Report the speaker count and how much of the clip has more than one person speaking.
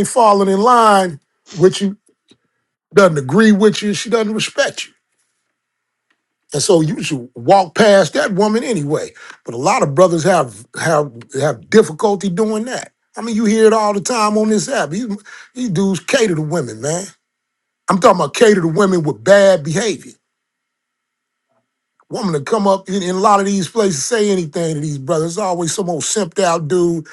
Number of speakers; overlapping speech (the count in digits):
1, no overlap